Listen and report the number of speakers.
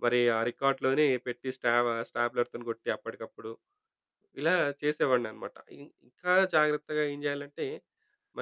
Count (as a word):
one